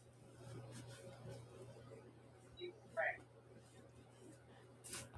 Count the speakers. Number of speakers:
0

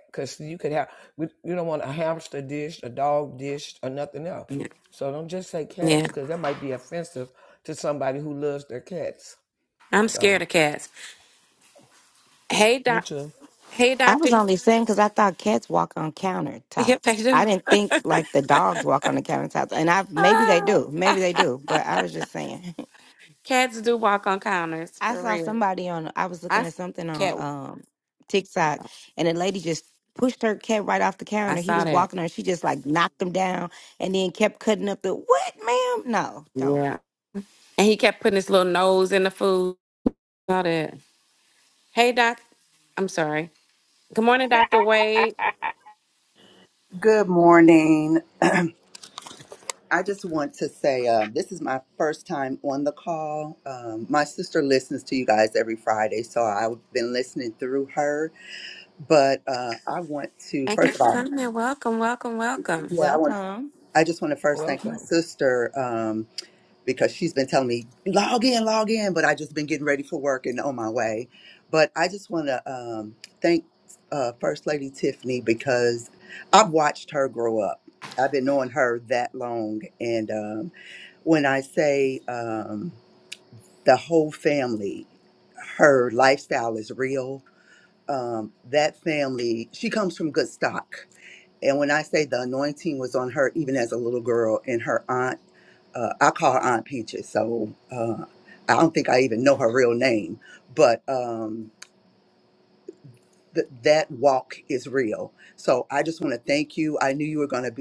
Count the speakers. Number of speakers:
4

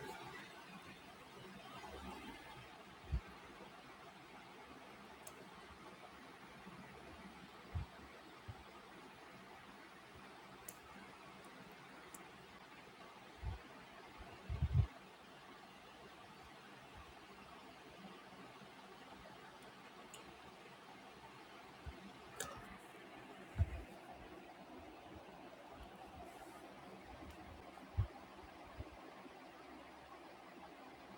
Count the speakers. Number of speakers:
0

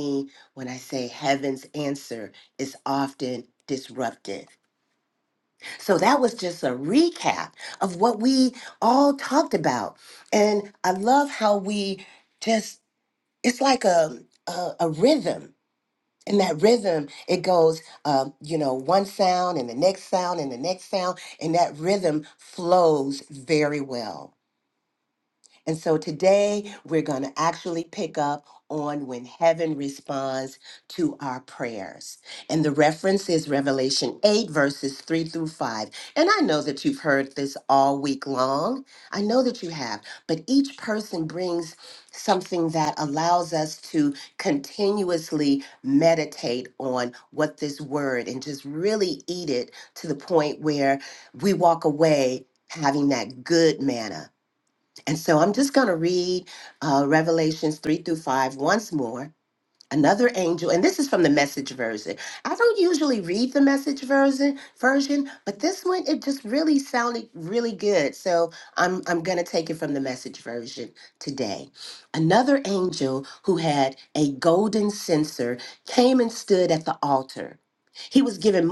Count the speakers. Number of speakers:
1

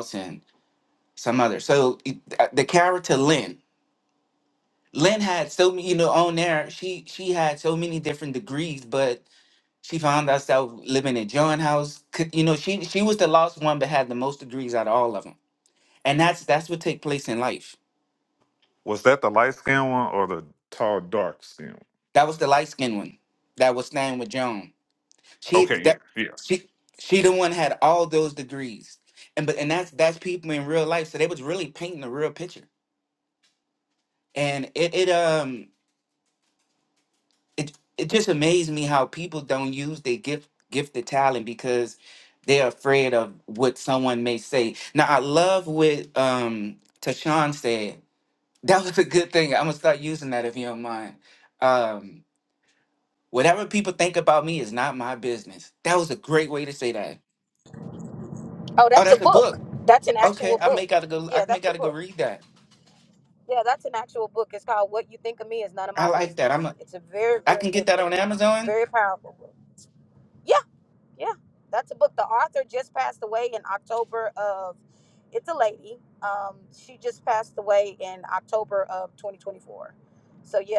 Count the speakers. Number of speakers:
3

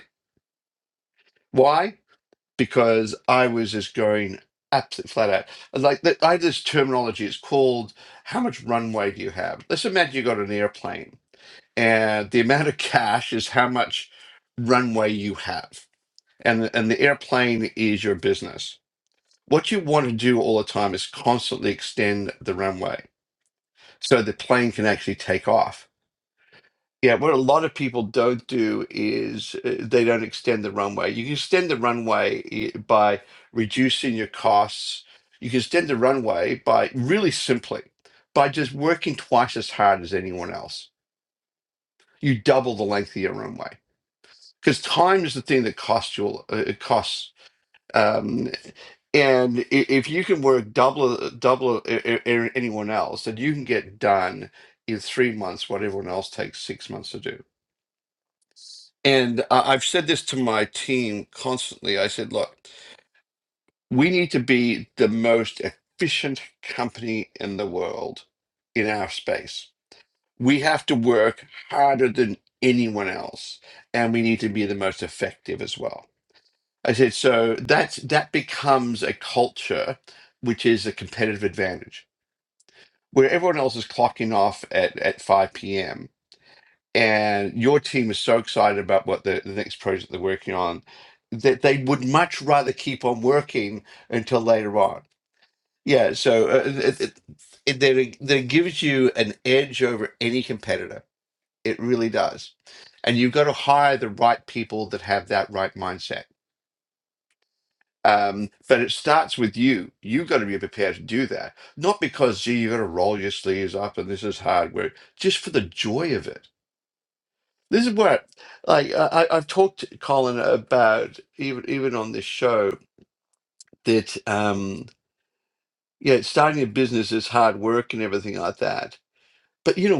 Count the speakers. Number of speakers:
1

